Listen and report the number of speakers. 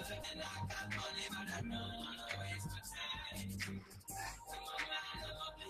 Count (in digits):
0